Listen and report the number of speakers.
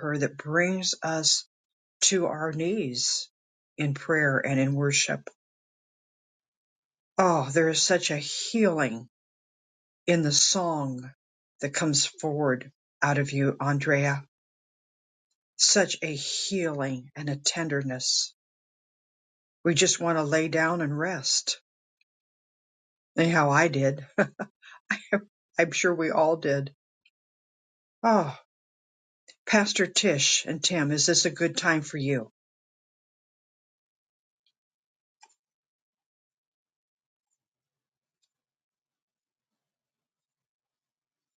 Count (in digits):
1